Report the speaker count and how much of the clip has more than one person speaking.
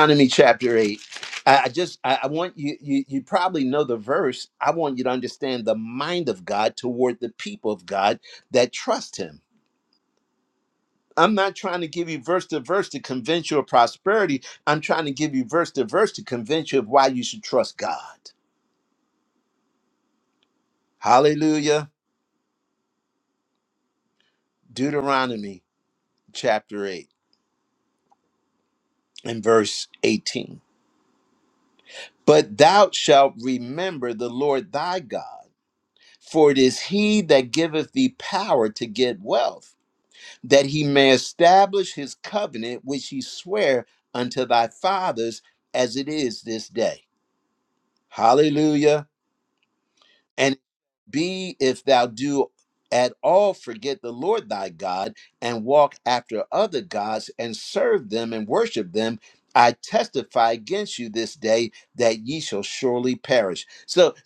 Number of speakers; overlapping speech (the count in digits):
1, no overlap